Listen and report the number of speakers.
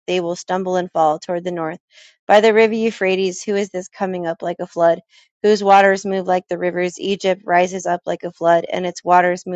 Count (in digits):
1